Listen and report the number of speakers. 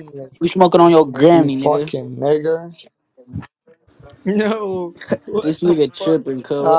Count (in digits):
3